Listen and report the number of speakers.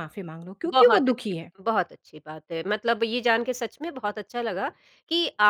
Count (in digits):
2